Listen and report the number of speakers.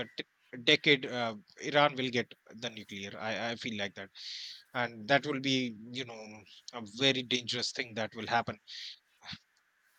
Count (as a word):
one